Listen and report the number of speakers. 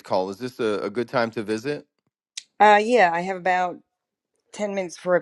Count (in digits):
2